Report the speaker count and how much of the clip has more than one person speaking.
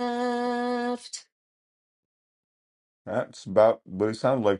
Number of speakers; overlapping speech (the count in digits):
2, no overlap